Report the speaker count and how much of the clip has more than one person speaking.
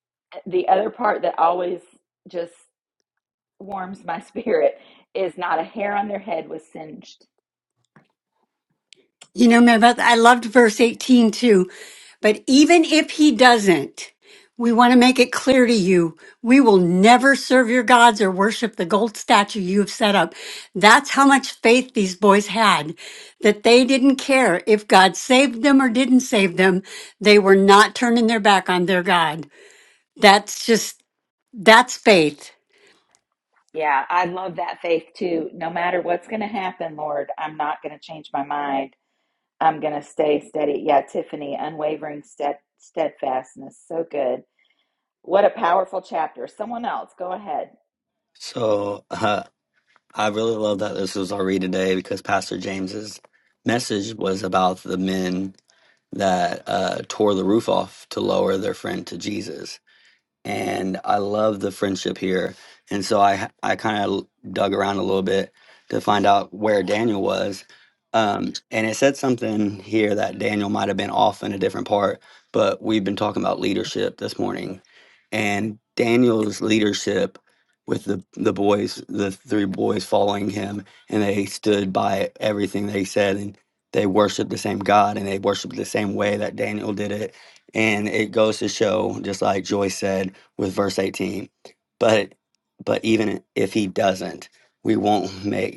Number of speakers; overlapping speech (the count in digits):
3, no overlap